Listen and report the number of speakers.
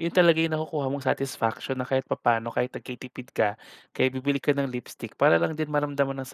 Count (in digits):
1